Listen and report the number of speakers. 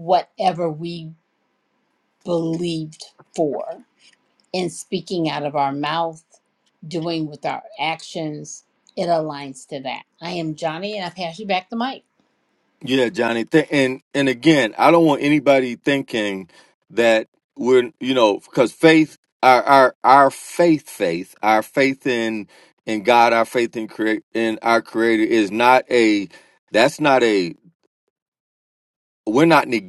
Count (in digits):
2